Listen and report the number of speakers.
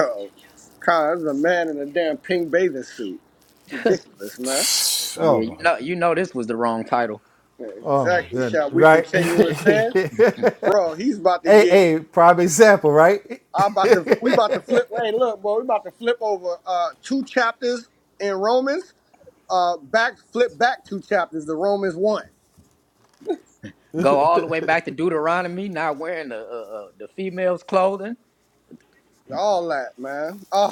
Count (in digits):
3